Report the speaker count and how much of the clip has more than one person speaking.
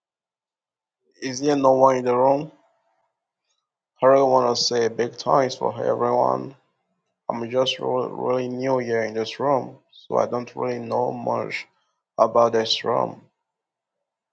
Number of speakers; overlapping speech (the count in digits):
1, no overlap